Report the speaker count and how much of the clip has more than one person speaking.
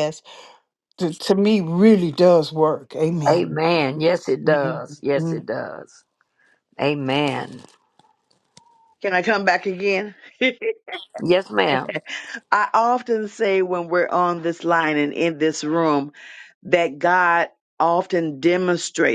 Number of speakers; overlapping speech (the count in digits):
3, about 4%